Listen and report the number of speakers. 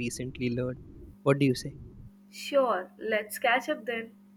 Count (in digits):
2